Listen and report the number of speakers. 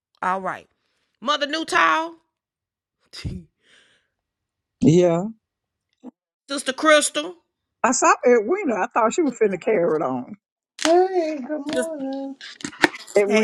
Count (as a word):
three